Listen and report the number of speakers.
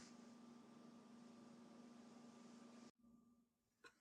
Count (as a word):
zero